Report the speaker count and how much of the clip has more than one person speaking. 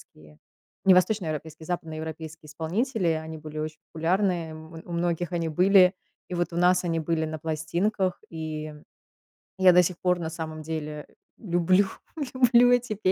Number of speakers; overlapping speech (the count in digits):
1, no overlap